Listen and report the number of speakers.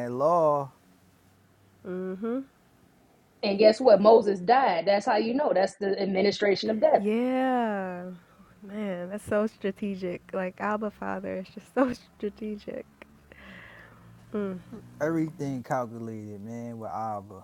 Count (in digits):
3